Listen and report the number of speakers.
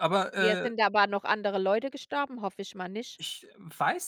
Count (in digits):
2